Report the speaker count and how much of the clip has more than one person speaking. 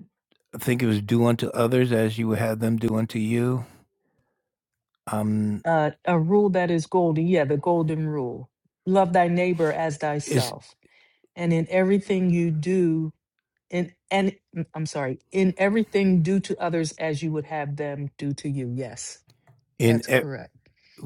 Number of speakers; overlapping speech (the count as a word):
two, about 3%